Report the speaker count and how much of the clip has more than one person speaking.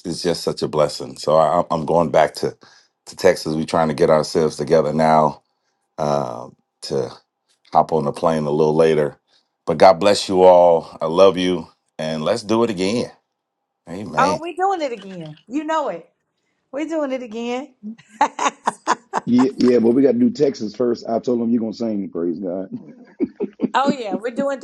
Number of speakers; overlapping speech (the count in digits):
3, about 1%